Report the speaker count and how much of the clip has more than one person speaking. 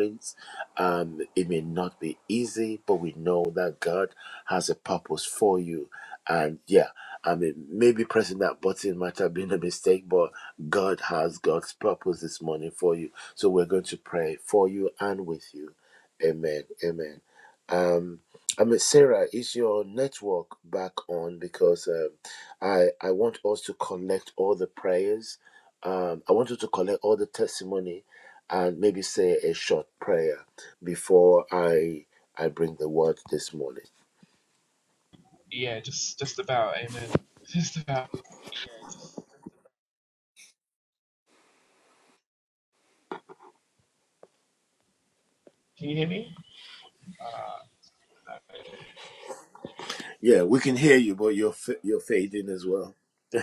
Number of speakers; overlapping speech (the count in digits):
2, no overlap